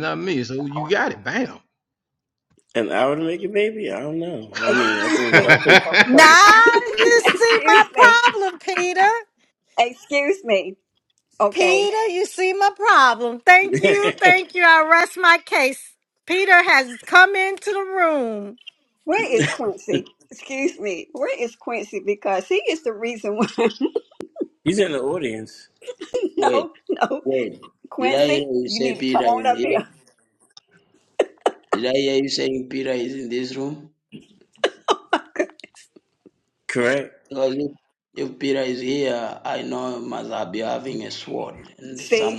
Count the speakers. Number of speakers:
5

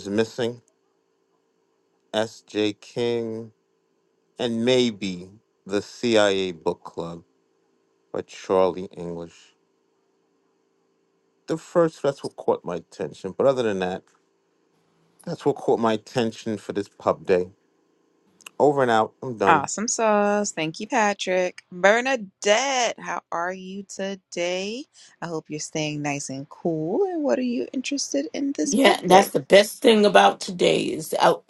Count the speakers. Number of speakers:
3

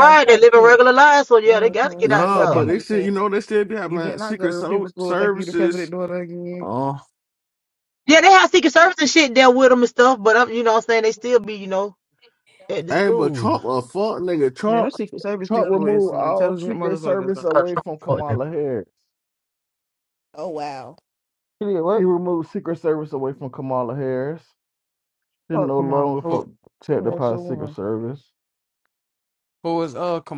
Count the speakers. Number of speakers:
5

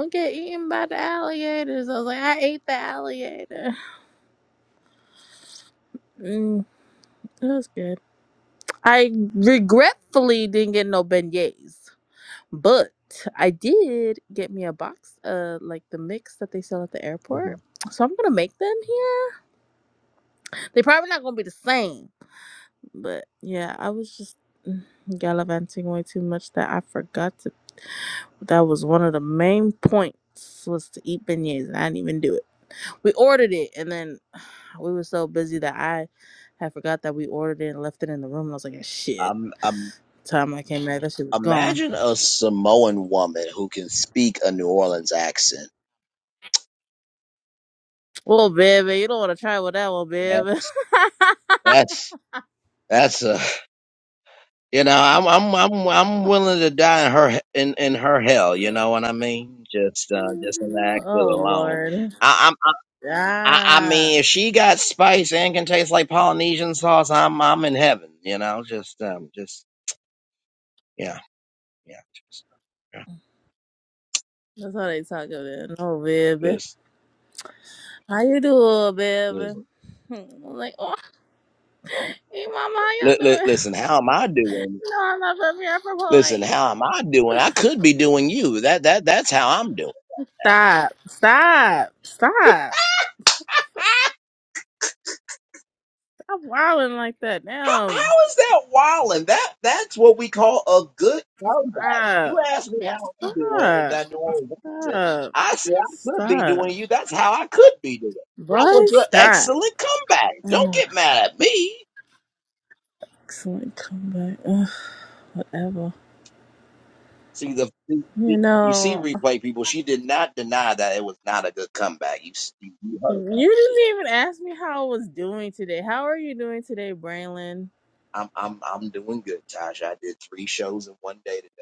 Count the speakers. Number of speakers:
2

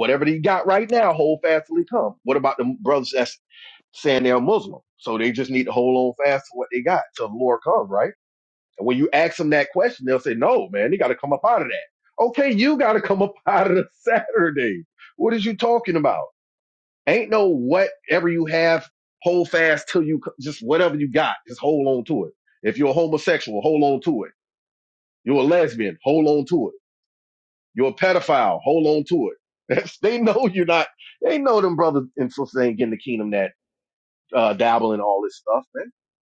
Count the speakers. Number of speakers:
1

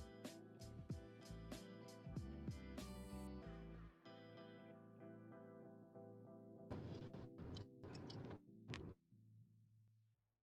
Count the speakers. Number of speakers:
0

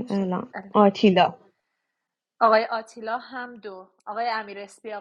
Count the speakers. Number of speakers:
2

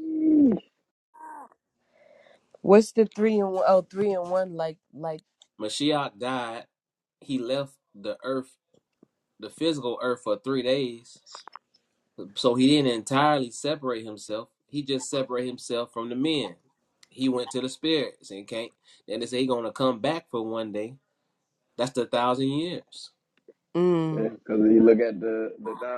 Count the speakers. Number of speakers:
3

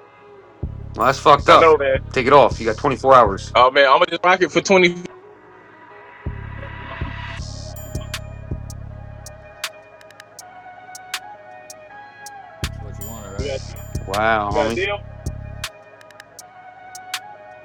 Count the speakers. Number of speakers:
3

